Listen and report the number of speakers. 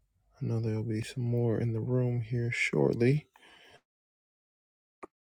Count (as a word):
one